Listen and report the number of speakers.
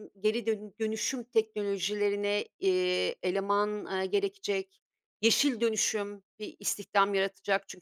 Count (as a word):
one